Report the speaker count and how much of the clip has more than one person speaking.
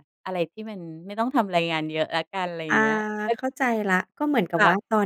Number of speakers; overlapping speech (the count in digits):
2, about 7%